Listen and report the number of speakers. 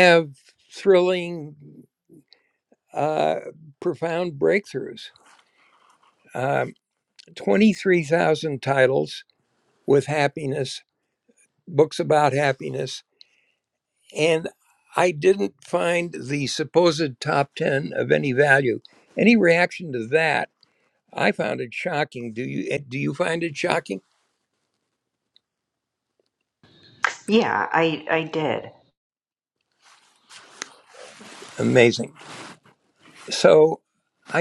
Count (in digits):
2